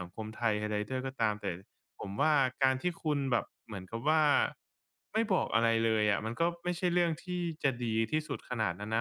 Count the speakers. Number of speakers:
one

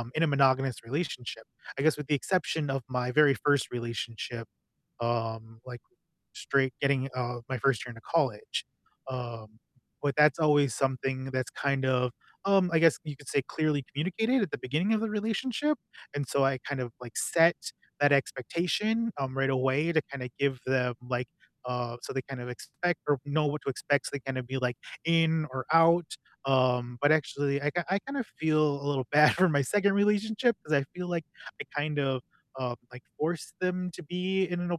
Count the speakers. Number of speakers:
one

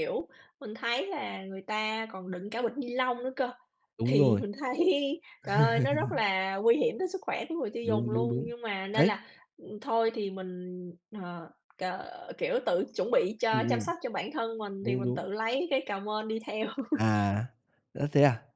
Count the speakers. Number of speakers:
two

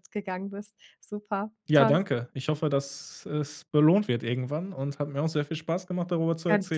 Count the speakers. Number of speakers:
two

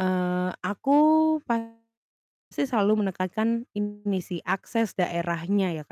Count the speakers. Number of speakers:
one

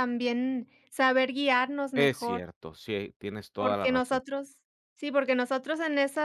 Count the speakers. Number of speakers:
two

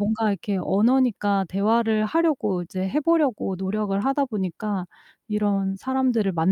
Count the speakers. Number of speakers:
one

